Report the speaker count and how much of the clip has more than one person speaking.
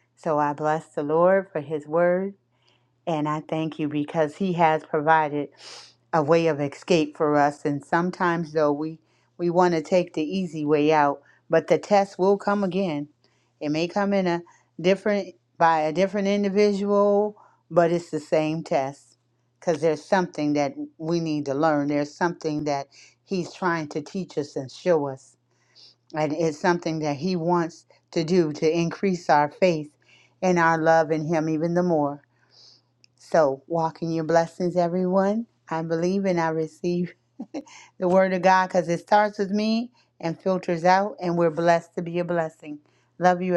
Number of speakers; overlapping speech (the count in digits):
1, no overlap